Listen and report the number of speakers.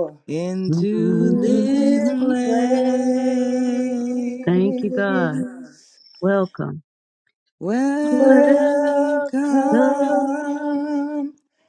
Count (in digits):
3